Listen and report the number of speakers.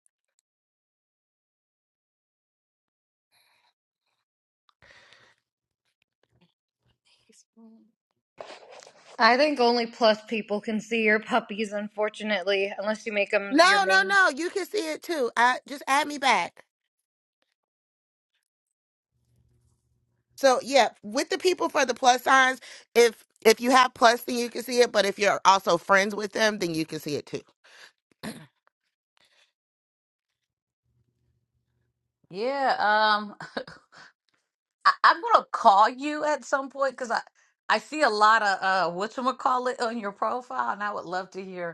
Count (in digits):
3